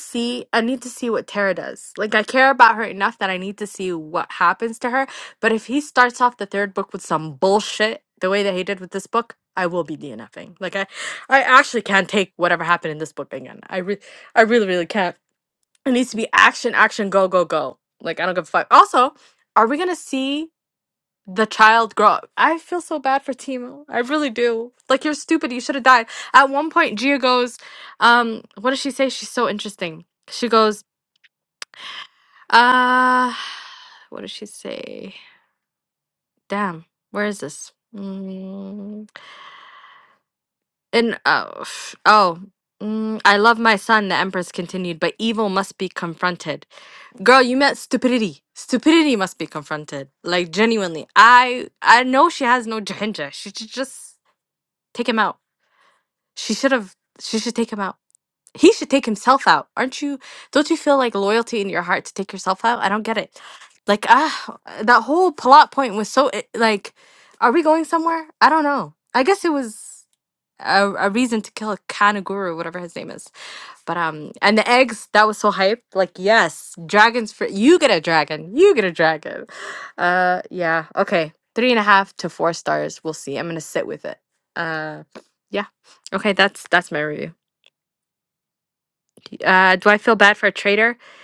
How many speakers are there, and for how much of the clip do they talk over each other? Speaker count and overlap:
1, no overlap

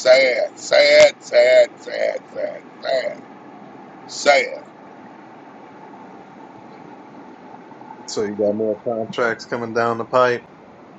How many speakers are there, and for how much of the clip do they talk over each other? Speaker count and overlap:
2, no overlap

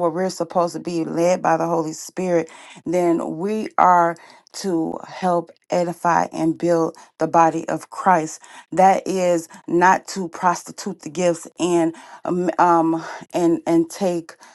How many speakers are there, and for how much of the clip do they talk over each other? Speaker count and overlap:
1, no overlap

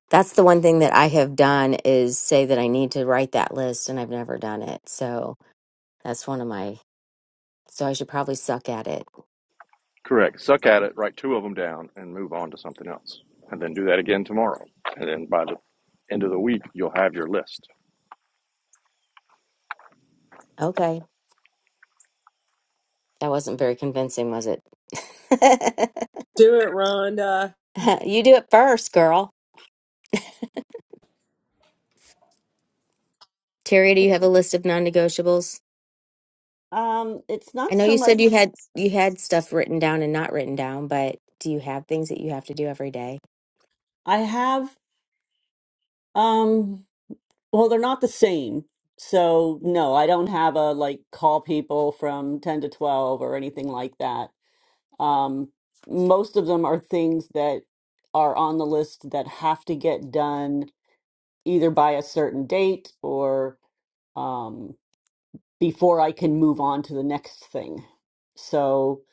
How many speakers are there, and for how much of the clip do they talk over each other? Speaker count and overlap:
4, about 1%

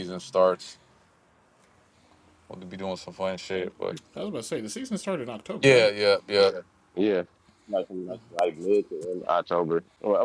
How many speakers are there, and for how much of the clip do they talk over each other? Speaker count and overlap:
3, about 3%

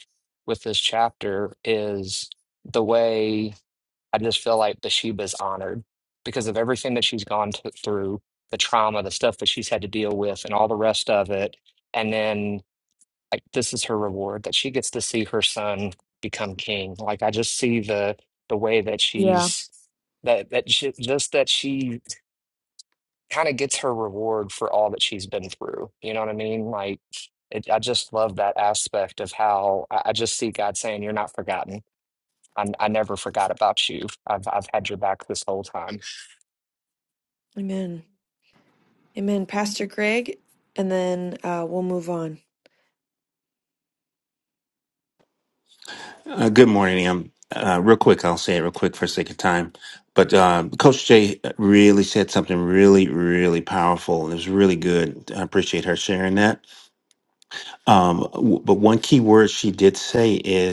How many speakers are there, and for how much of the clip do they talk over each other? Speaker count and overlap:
3, about 1%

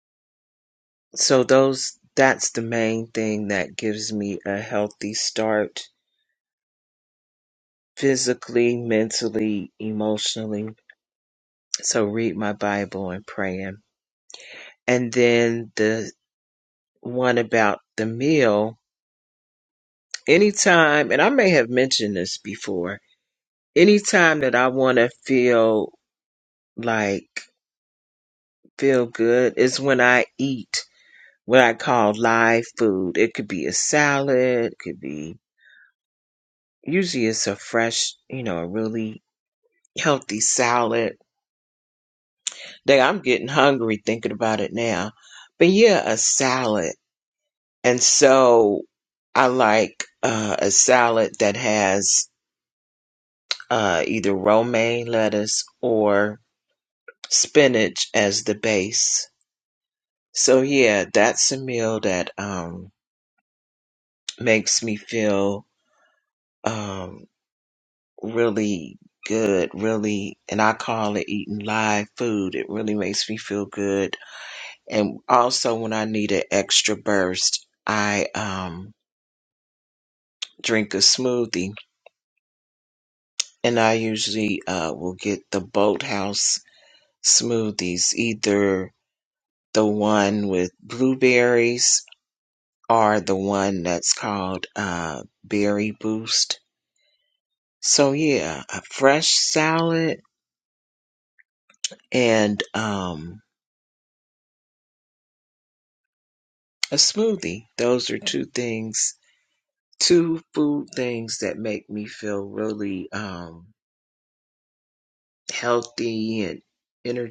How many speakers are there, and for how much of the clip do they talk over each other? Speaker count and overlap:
1, no overlap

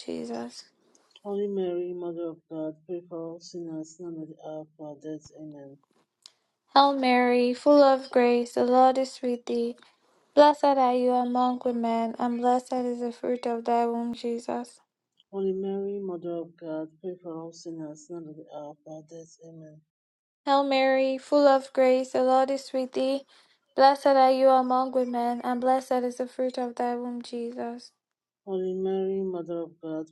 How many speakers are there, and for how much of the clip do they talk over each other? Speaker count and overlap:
2, no overlap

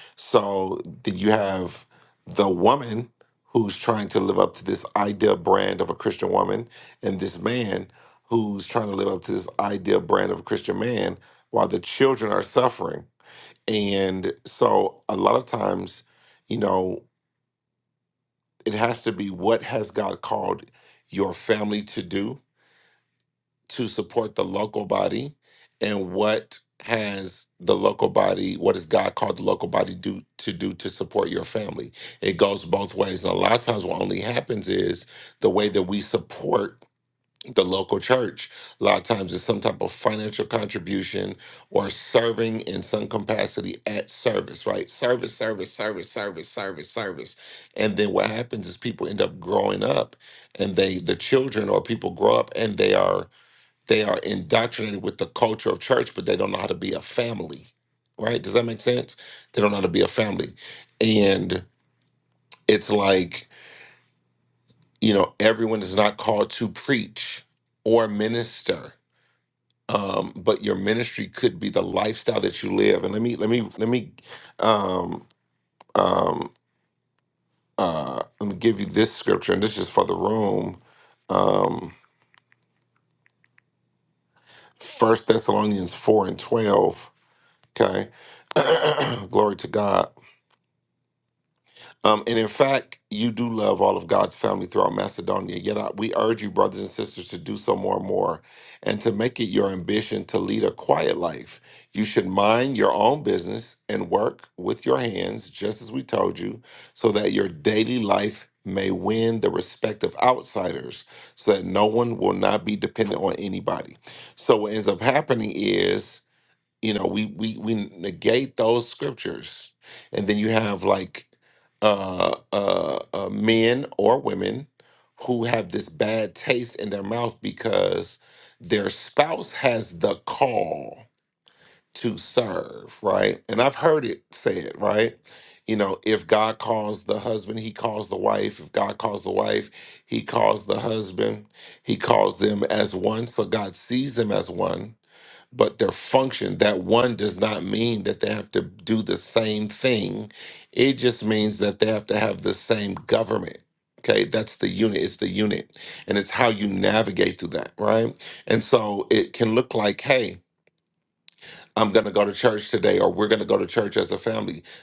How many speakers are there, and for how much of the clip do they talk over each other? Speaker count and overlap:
1, no overlap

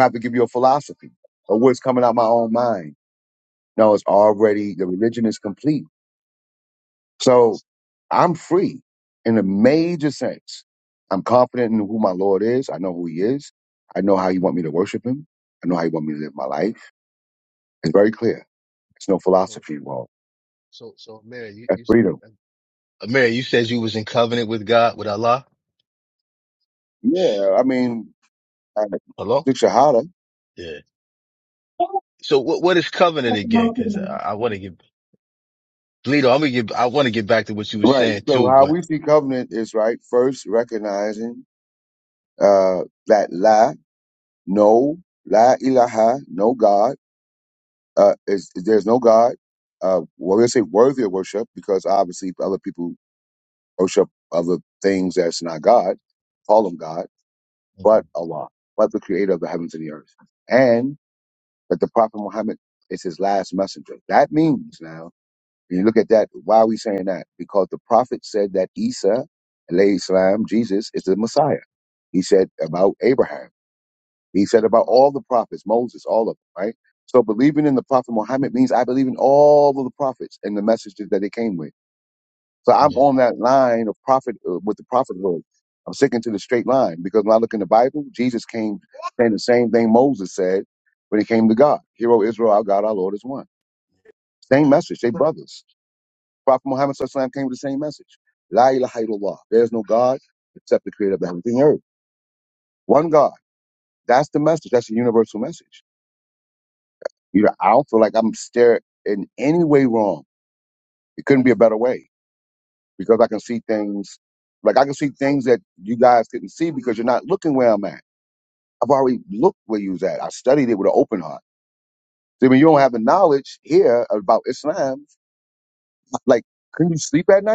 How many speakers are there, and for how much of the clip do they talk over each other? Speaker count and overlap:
2, about 1%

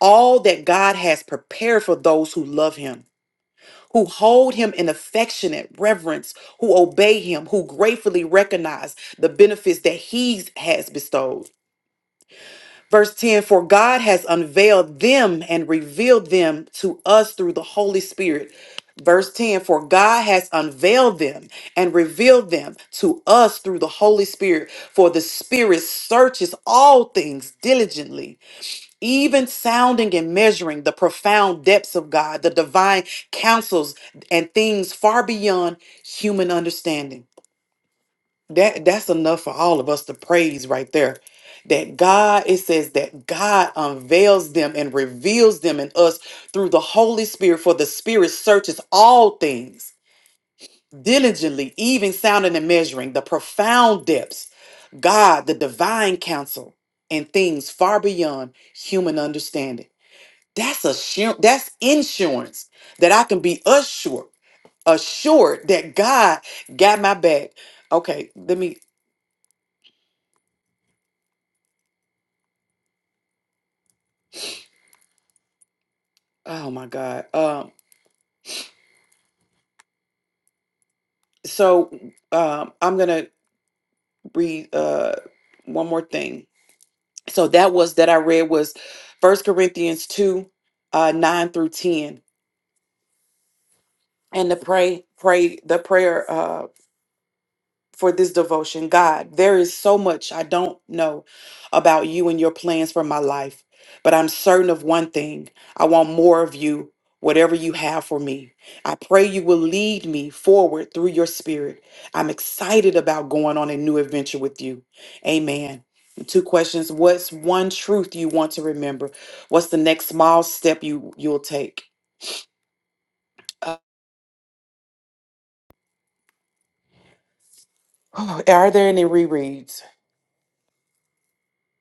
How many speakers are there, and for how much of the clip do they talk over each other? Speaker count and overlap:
1, no overlap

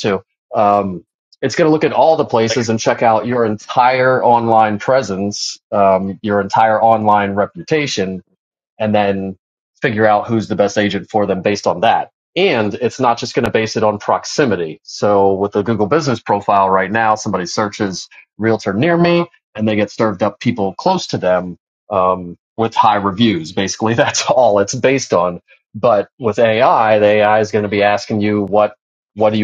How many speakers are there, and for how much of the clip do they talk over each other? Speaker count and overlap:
1, no overlap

